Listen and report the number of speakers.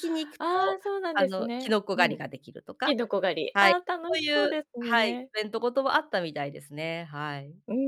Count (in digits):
2